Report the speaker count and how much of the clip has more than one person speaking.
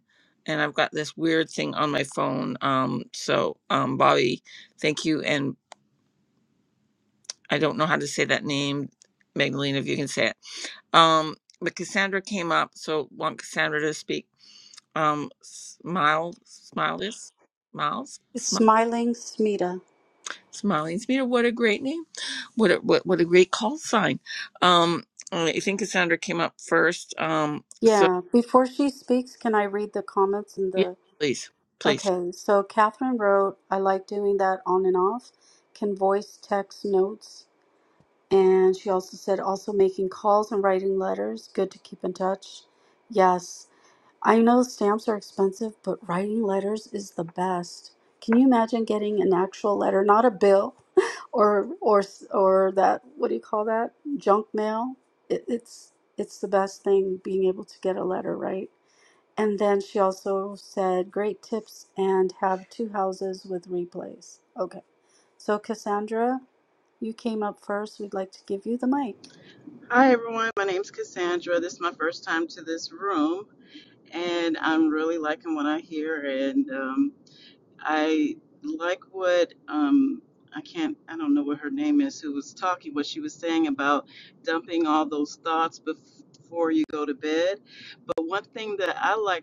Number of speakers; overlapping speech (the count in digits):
3, about 1%